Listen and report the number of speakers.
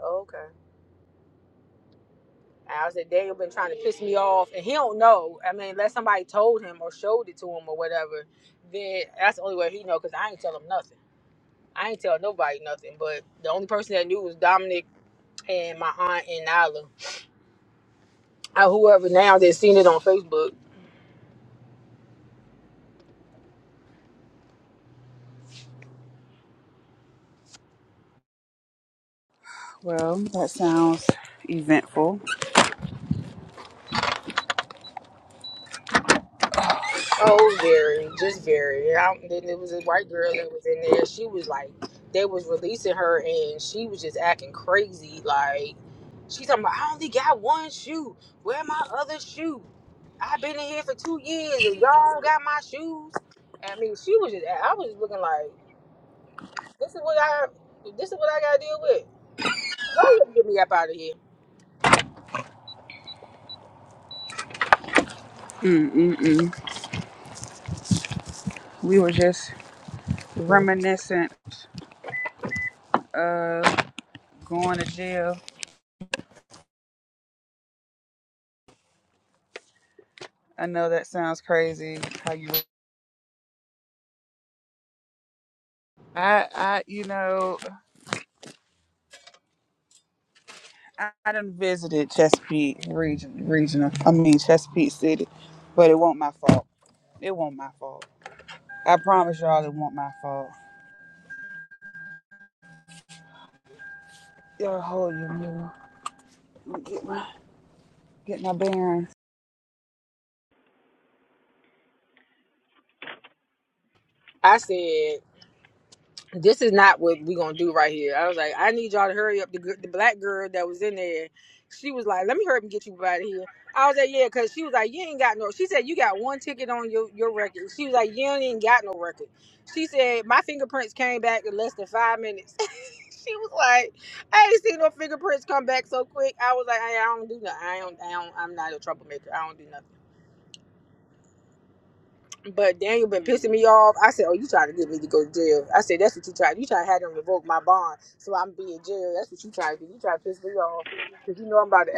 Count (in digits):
2